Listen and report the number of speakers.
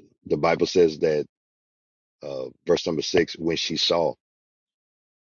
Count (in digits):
1